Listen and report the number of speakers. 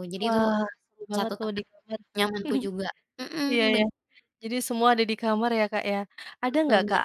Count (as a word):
two